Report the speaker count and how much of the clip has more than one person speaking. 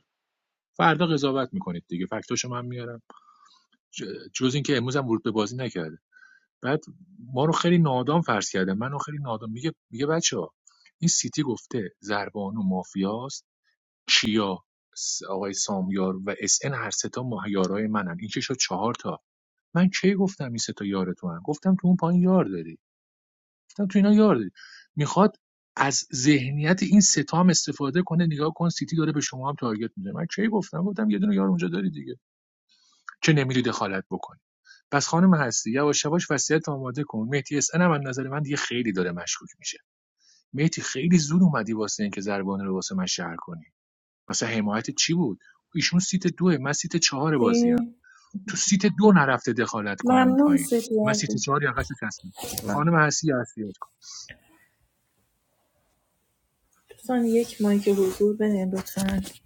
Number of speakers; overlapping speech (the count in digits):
2, about 2%